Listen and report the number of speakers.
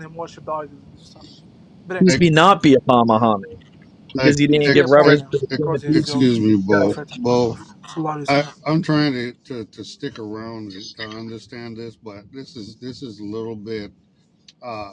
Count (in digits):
3